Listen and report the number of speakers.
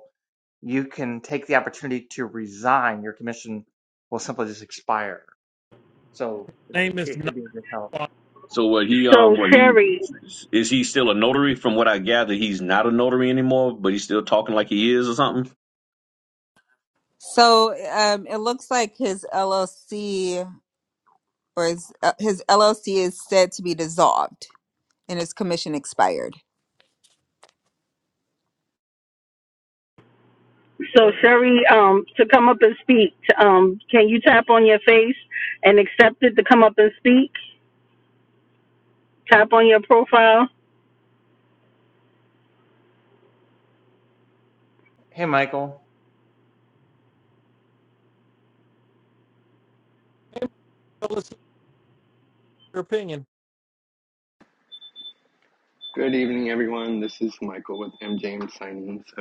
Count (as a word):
six